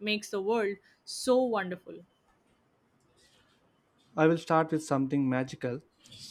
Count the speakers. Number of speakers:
two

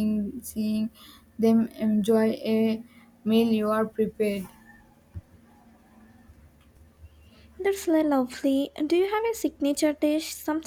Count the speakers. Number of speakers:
two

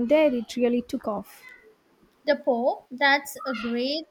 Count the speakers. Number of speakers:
two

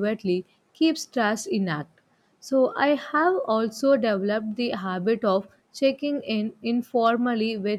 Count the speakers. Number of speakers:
one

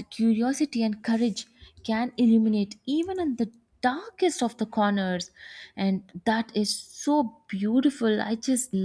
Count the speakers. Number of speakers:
one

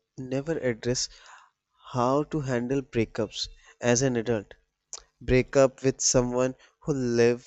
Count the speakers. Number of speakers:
one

